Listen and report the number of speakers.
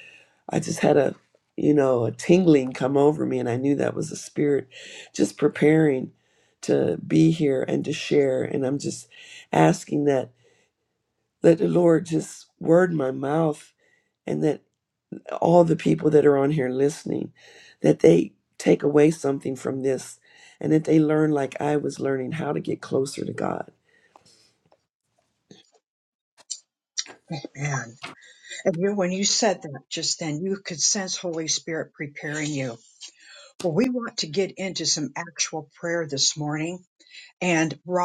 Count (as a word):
two